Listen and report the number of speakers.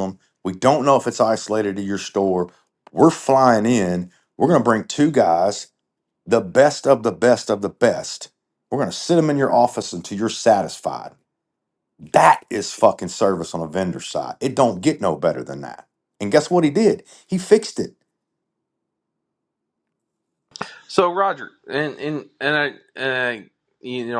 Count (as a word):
two